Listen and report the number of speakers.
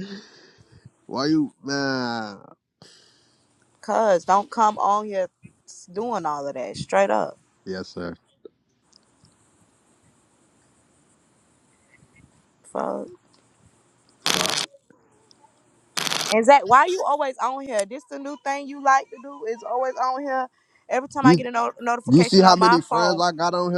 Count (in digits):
2